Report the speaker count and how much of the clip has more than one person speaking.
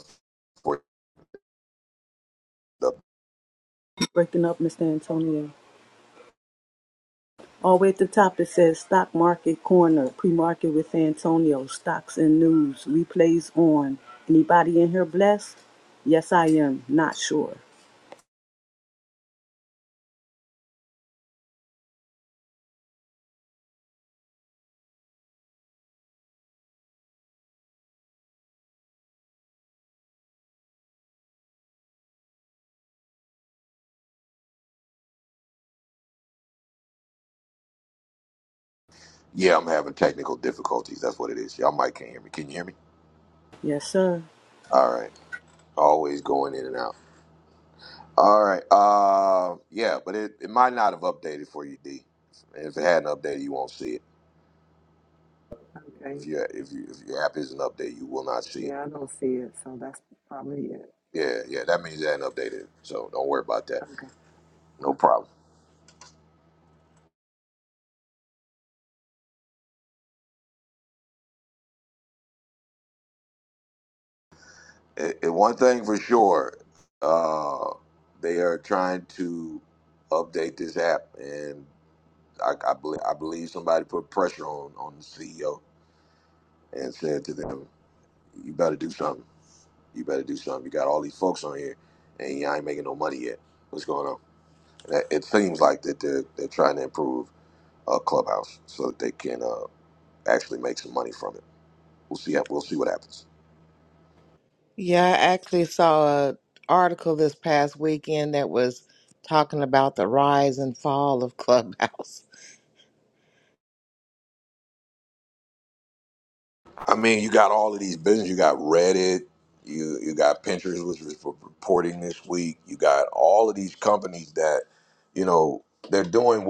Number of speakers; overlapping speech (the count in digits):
4, under 1%